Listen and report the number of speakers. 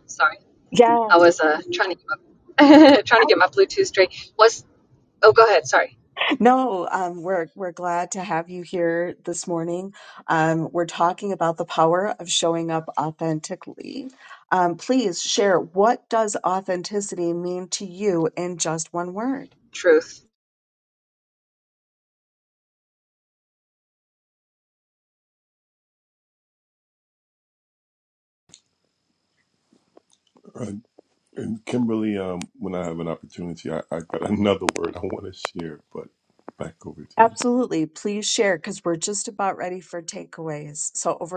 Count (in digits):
3